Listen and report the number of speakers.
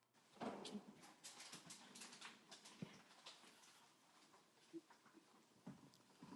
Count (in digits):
0